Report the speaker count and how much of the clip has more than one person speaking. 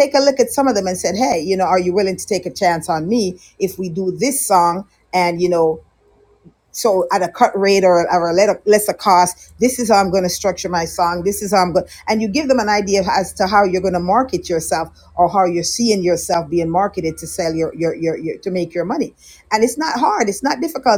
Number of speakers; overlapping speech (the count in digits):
1, no overlap